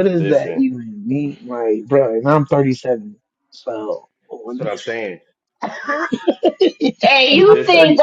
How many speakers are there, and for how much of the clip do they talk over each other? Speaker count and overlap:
three, about 14%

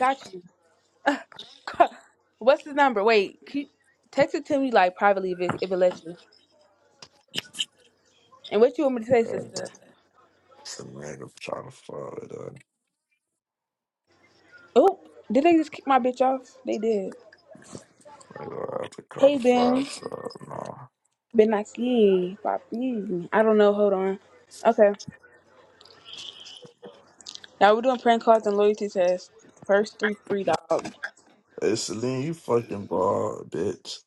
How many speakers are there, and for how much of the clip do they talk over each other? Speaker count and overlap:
two, about 3%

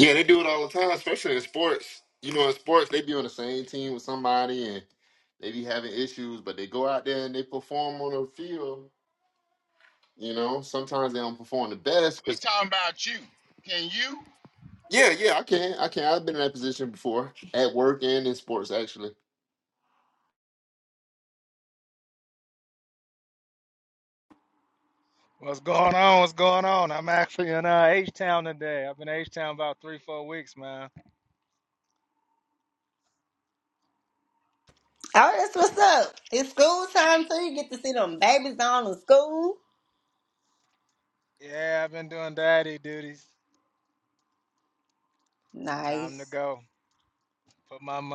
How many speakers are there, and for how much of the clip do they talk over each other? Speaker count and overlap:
four, about 1%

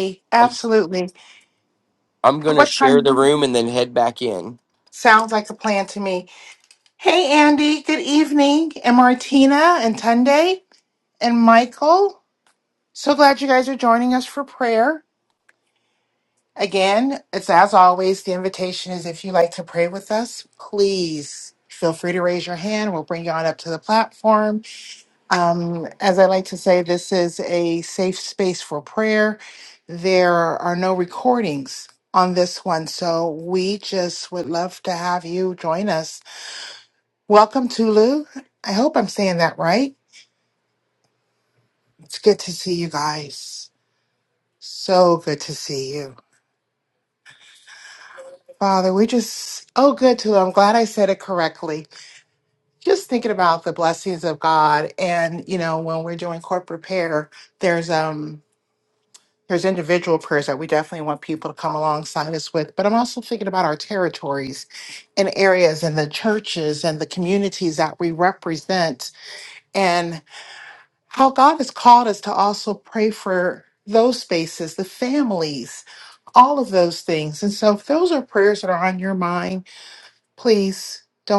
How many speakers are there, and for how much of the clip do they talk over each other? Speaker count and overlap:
two, about 1%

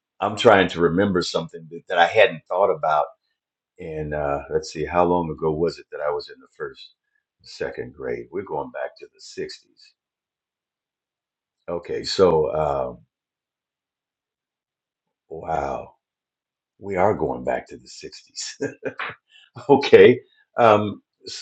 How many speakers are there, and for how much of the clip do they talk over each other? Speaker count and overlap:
one, no overlap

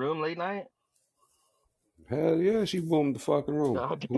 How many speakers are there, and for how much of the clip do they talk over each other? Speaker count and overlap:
two, about 11%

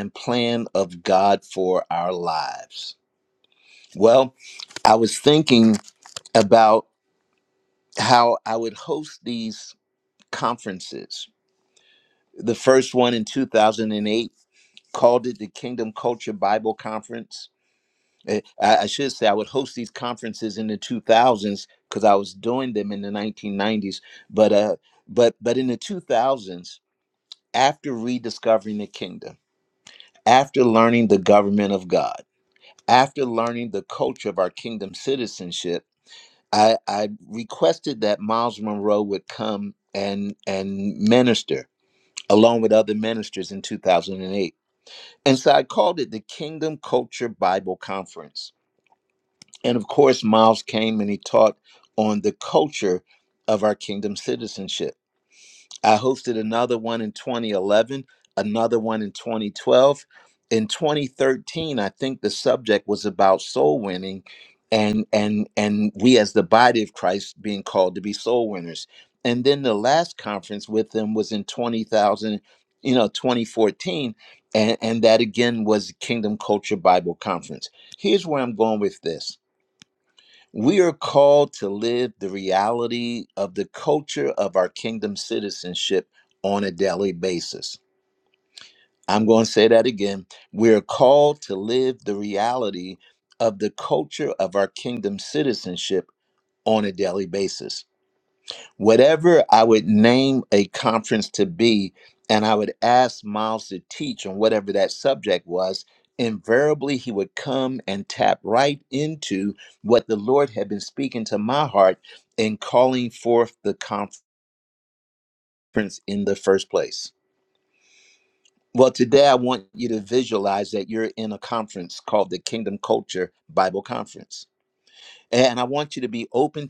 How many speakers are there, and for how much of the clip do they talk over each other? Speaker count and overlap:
one, no overlap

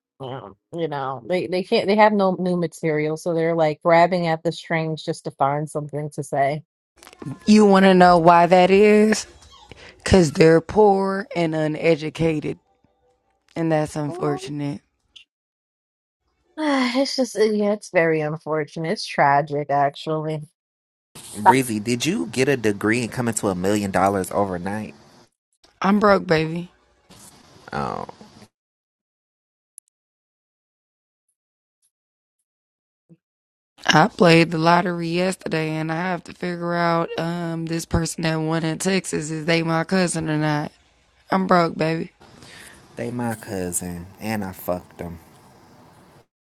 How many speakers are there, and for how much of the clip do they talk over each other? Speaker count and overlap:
three, about 1%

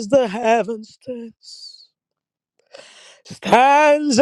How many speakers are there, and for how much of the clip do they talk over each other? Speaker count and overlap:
one, no overlap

